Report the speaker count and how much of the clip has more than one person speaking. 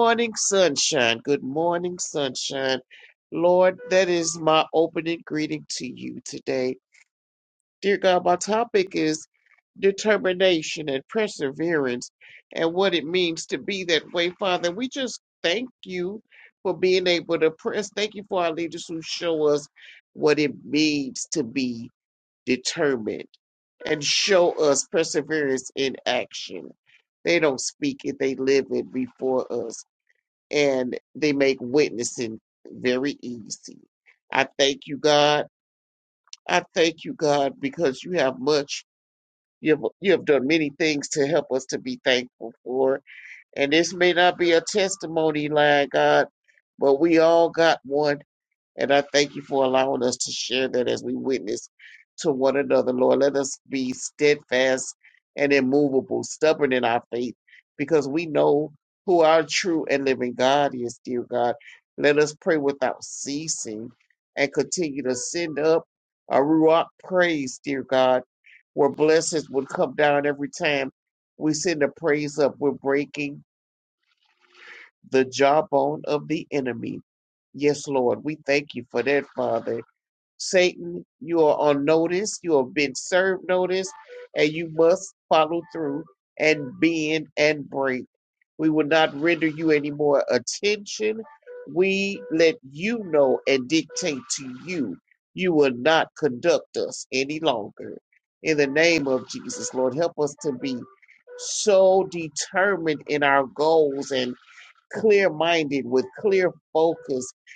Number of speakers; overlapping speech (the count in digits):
1, no overlap